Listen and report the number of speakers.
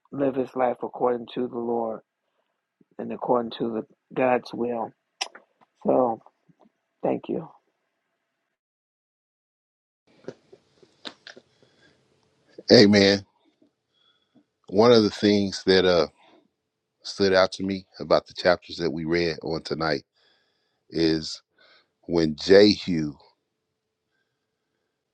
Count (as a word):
two